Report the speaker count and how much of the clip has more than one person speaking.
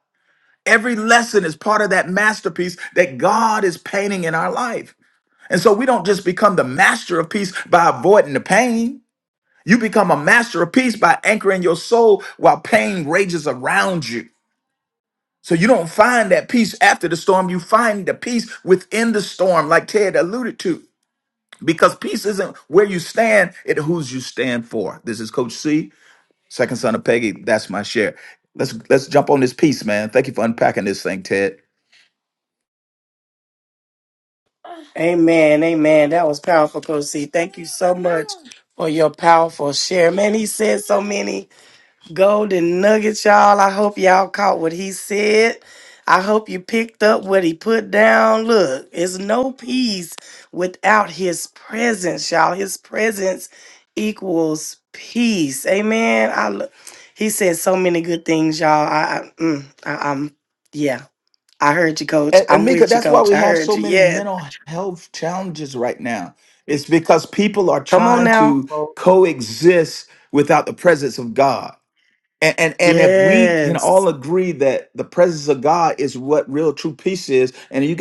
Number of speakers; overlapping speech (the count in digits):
2, about 4%